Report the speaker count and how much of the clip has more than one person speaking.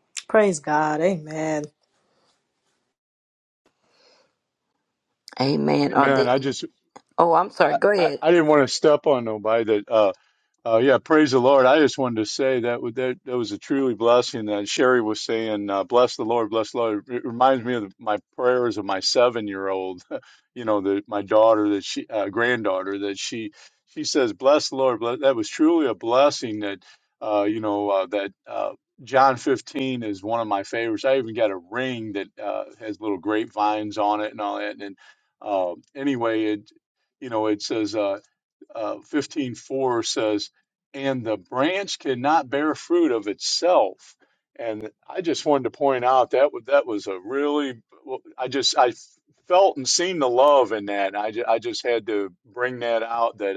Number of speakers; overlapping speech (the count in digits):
3, about 2%